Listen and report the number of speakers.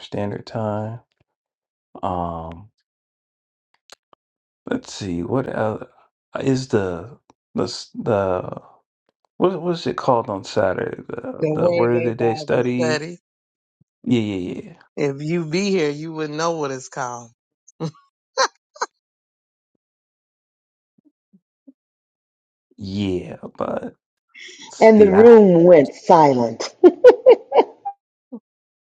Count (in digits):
3